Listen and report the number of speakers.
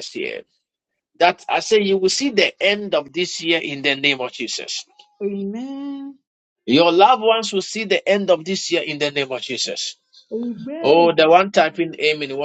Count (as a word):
two